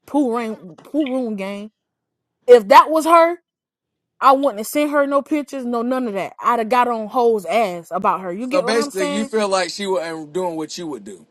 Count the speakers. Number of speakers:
2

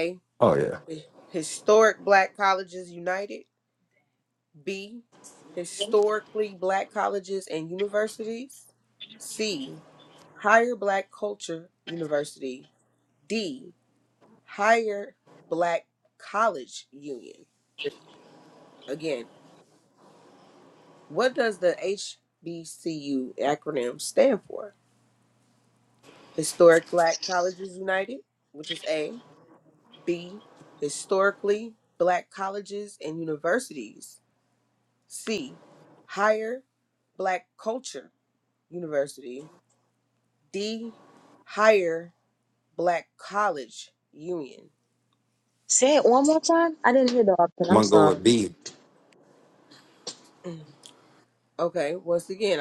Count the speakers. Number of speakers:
3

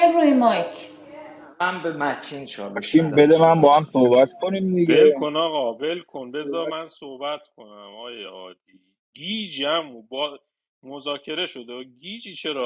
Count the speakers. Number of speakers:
4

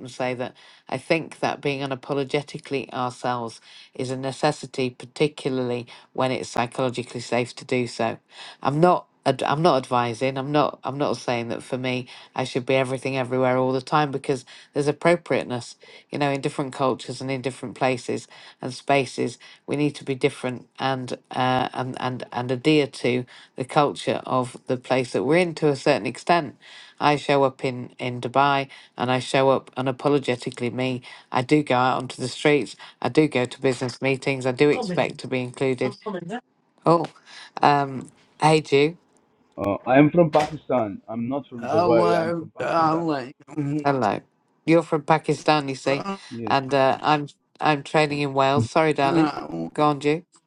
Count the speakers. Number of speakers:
3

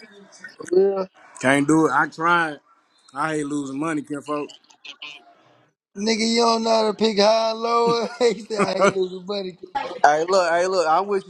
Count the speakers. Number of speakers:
3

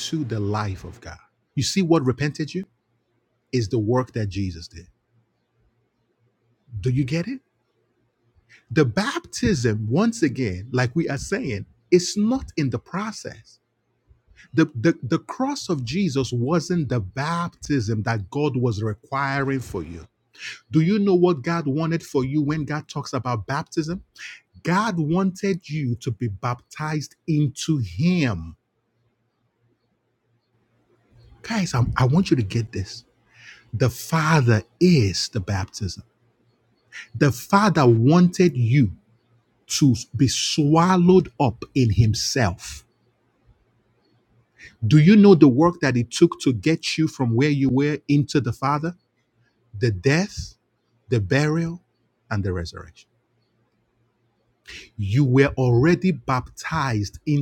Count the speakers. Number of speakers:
1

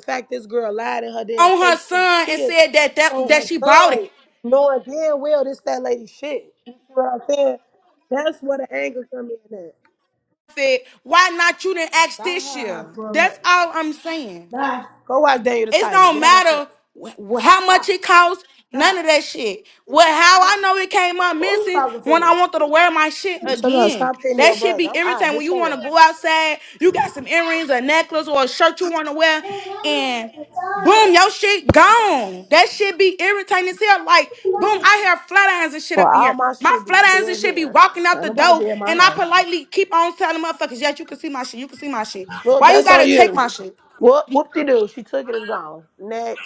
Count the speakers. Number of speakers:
2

